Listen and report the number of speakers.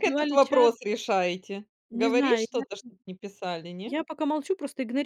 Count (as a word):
two